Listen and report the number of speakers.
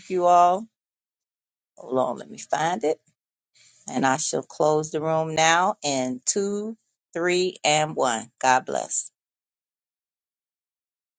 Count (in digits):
1